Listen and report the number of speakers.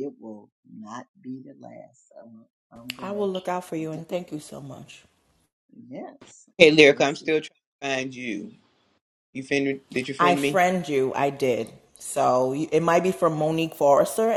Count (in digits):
3